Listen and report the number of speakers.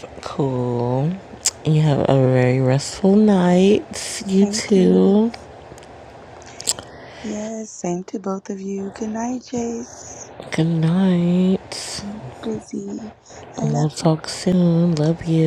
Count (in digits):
2